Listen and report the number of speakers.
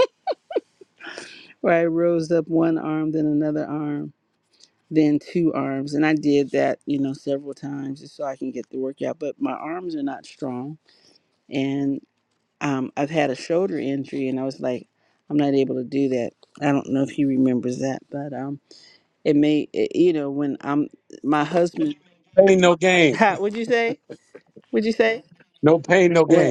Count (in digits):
2